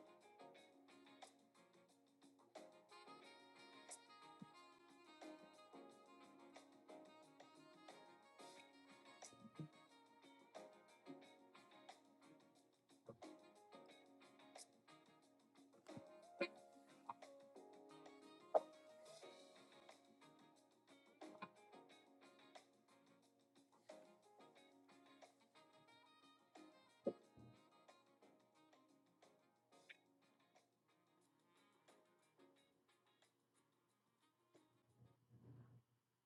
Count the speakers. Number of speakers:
0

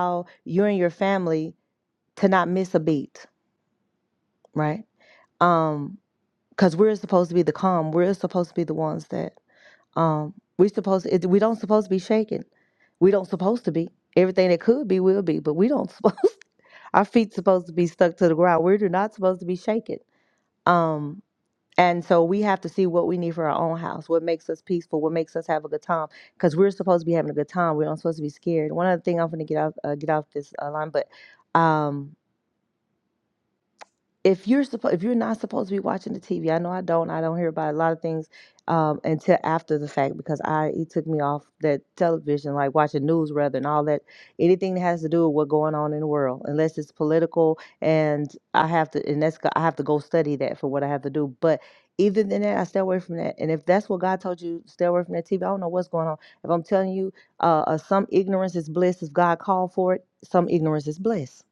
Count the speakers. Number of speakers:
1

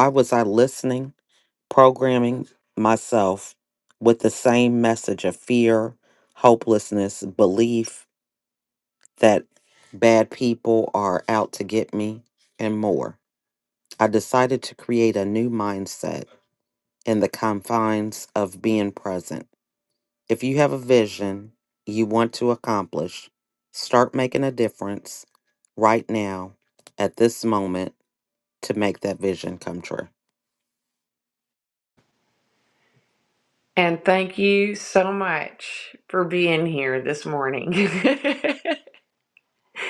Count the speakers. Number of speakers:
2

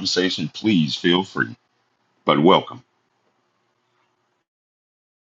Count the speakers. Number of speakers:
1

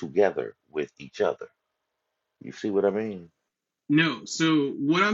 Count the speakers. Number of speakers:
2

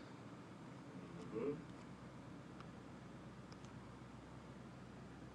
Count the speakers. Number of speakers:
0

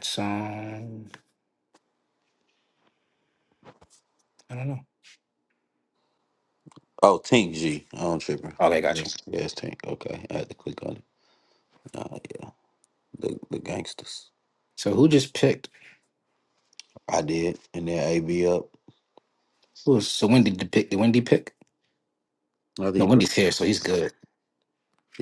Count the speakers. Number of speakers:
2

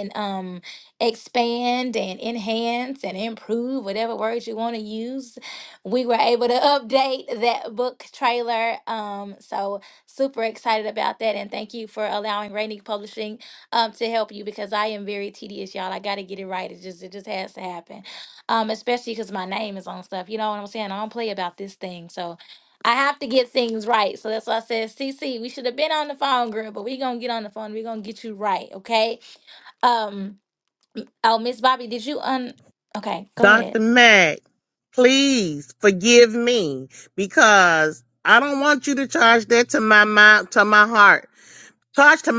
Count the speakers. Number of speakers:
2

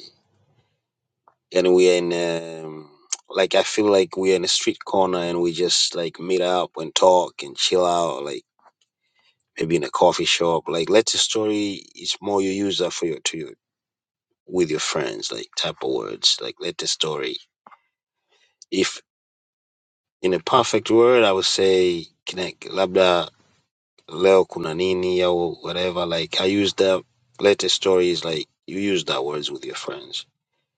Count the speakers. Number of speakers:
1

